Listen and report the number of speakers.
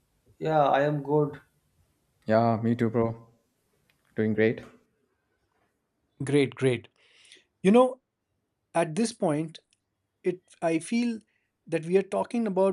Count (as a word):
three